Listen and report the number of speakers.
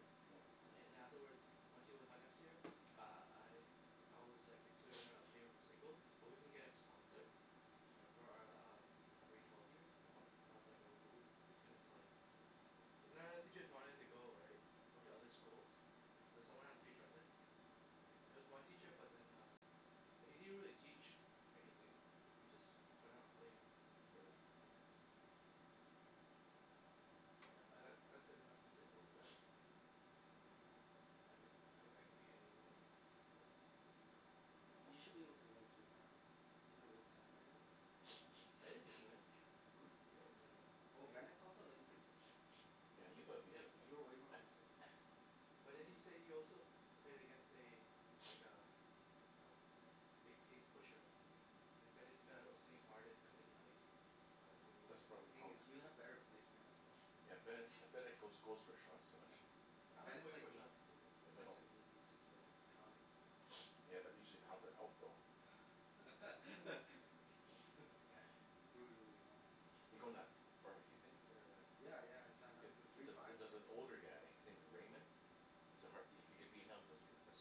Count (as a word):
three